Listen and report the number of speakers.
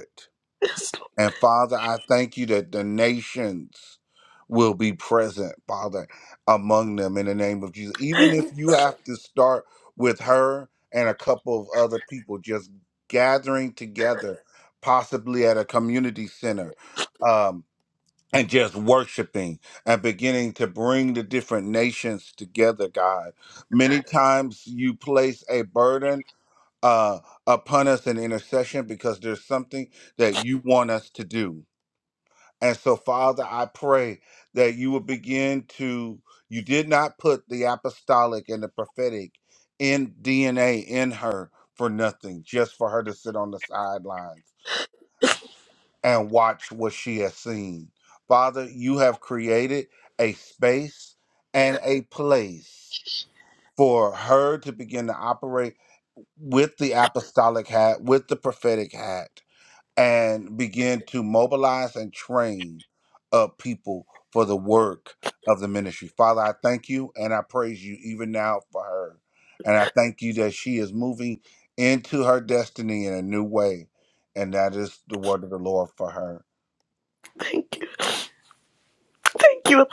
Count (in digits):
2